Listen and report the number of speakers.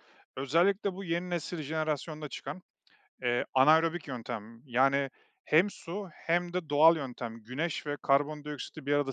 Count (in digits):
1